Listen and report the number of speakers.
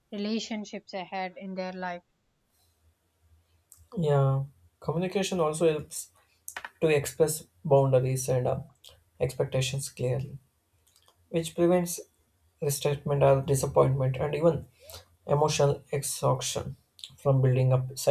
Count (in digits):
2